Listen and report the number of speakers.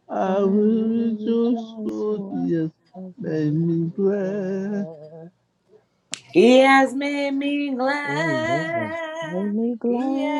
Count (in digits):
3